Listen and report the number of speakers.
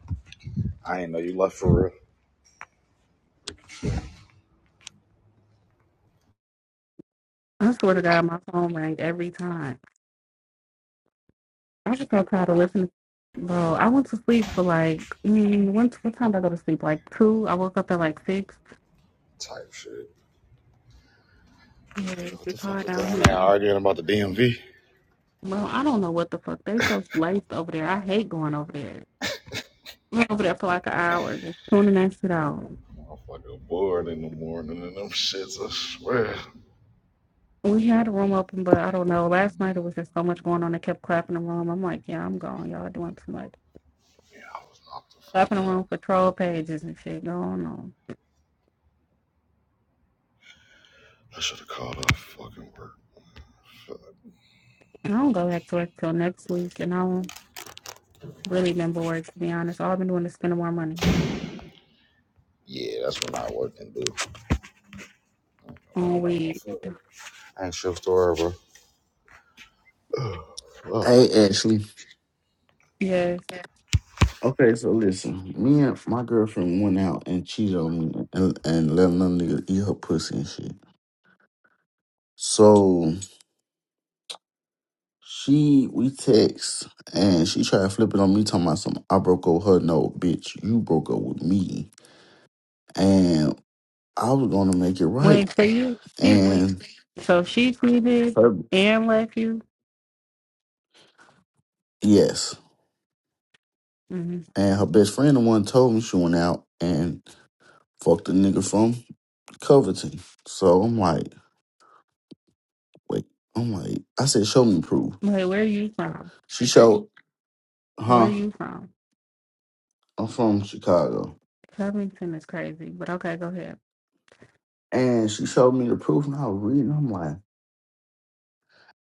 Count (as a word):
three